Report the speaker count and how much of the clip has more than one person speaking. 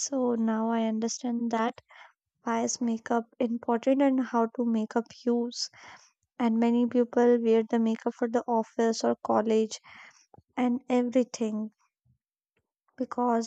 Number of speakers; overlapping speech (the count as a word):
one, no overlap